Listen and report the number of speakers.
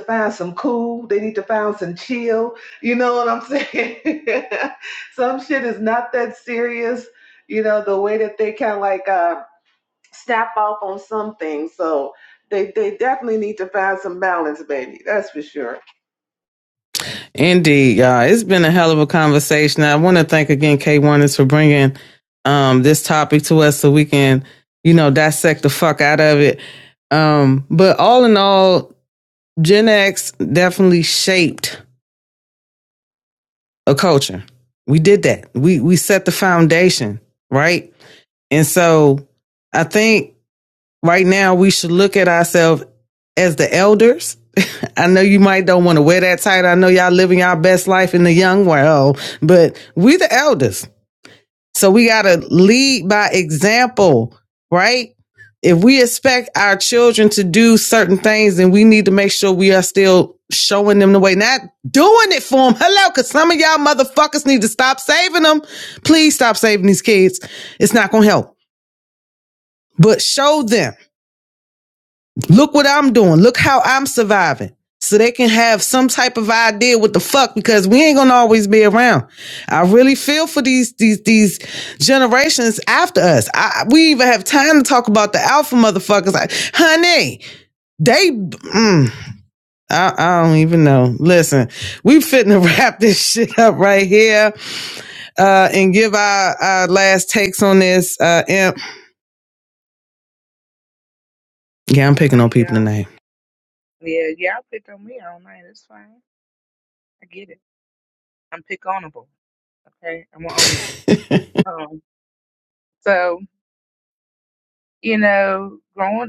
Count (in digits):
3